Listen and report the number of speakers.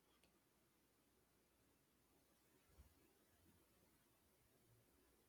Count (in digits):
0